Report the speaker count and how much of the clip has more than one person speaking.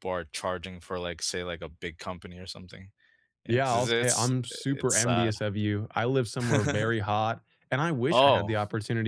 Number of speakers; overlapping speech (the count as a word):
two, about 27%